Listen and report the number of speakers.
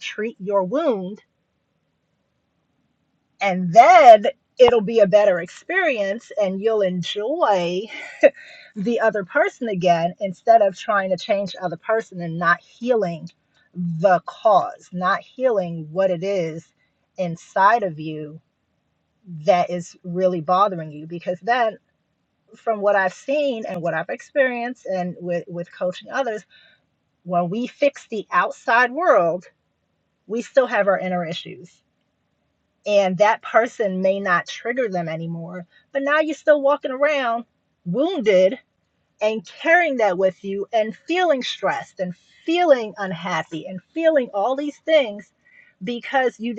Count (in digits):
1